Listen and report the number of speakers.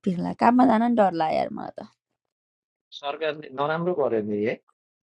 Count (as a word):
two